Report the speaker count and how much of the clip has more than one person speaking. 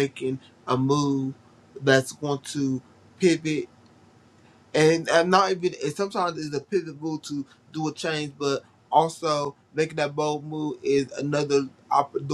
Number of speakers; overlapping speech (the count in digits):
1, no overlap